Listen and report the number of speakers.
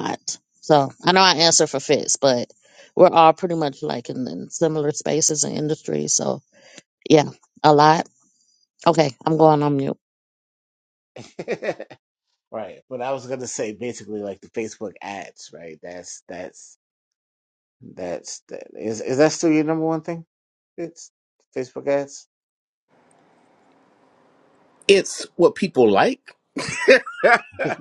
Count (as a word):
three